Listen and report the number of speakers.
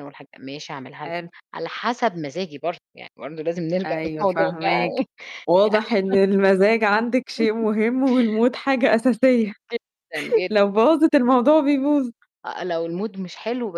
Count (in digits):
2